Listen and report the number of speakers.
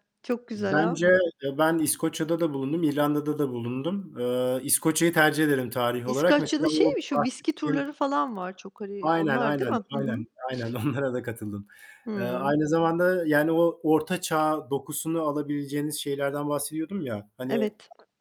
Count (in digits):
2